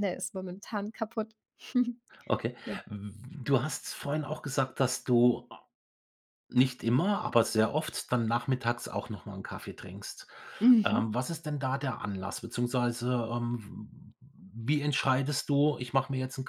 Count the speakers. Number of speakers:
two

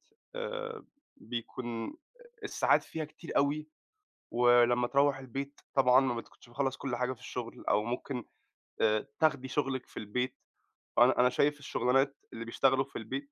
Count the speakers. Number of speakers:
one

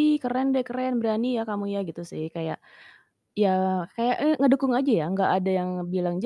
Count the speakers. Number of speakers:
one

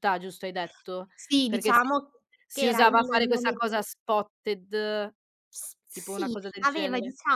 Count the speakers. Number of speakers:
two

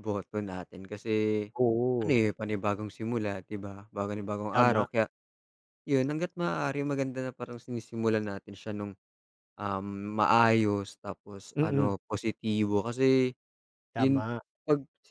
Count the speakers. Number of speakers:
two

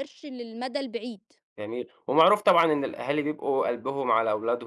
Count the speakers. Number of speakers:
two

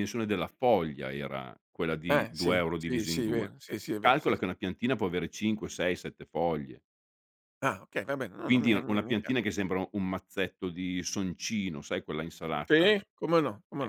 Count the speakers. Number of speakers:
two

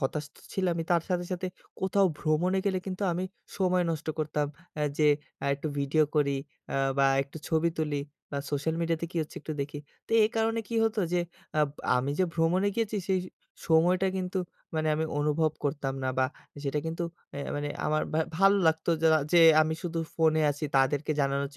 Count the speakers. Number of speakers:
one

